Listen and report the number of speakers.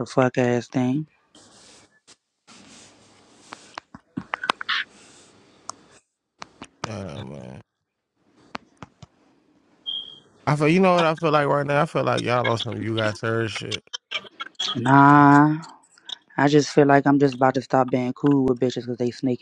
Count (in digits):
2